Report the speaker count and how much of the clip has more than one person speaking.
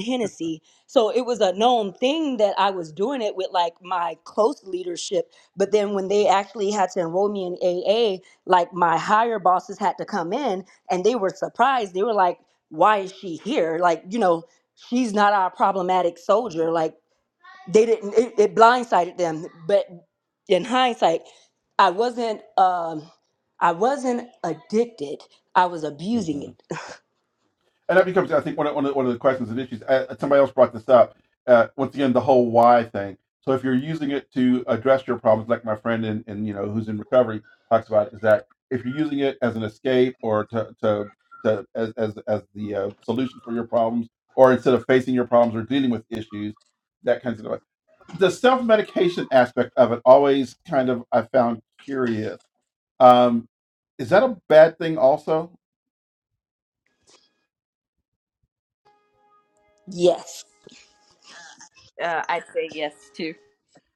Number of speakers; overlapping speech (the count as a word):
three, about 1%